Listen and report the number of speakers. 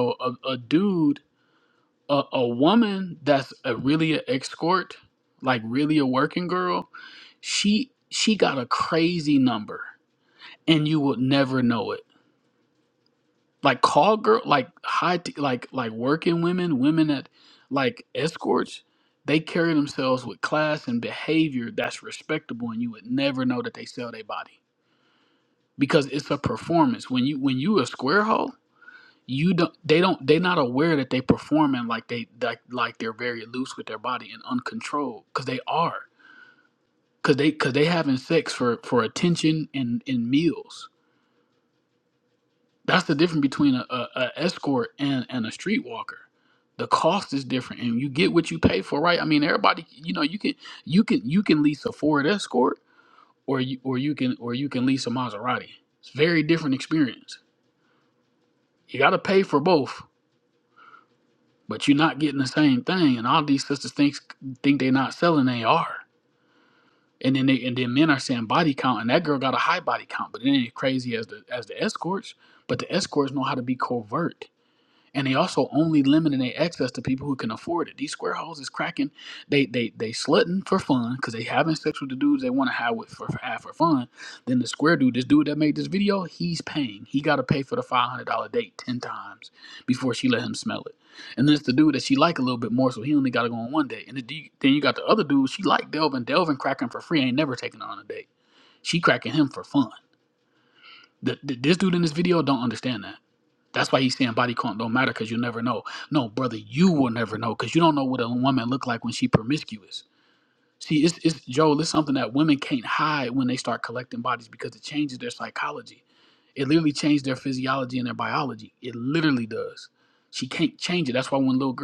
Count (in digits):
1